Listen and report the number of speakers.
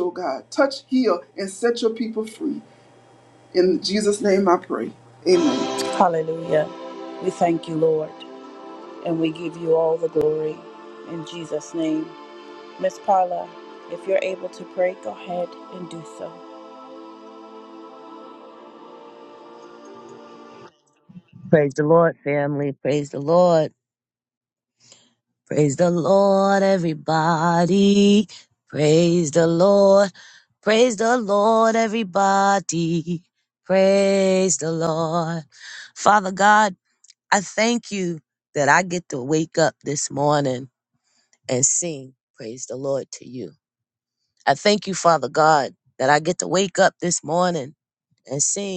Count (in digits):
3